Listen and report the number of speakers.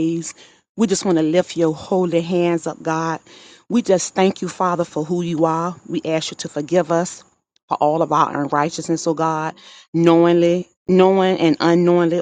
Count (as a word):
one